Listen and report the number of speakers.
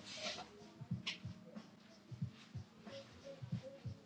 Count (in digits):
0